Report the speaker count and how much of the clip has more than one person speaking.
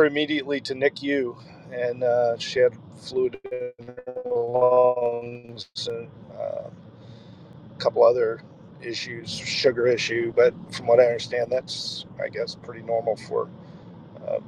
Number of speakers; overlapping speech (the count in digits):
1, no overlap